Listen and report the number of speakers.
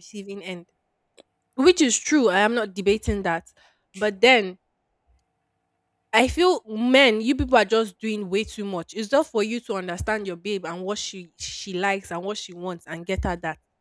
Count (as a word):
one